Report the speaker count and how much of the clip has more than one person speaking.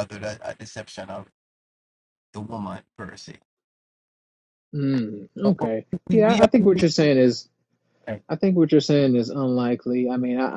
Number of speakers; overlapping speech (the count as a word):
two, about 8%